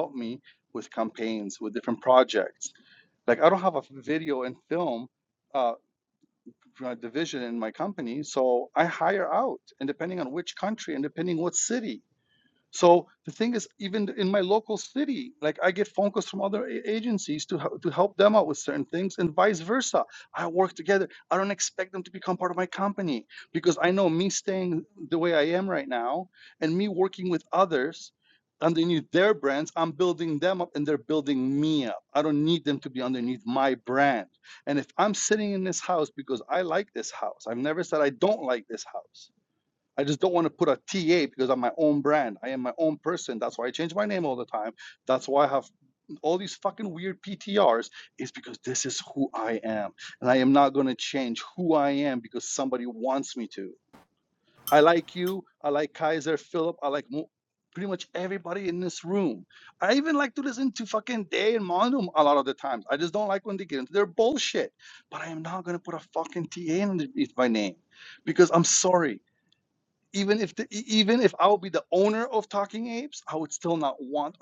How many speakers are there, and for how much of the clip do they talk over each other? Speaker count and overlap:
one, no overlap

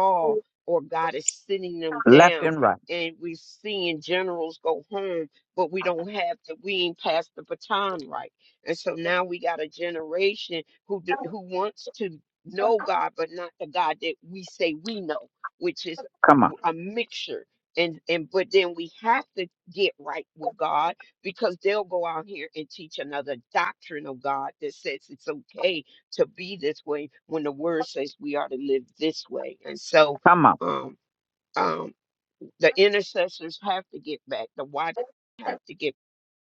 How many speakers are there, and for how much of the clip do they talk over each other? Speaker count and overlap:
two, about 1%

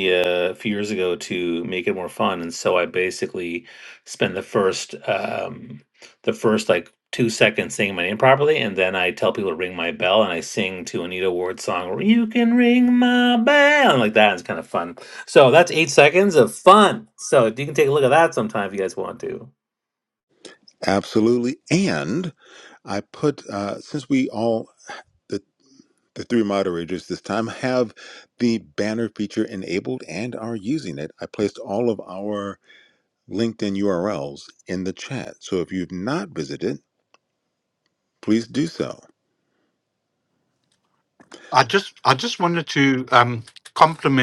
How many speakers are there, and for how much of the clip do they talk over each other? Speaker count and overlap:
three, no overlap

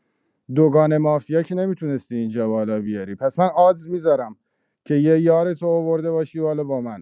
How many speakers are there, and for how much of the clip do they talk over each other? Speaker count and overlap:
one, no overlap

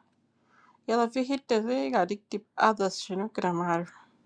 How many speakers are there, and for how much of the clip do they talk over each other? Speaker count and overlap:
one, no overlap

